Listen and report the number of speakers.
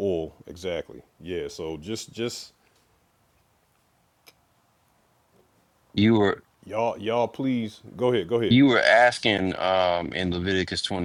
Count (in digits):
2